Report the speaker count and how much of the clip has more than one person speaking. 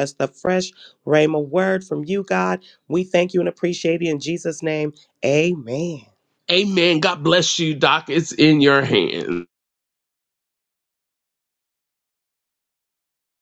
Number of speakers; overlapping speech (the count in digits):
2, no overlap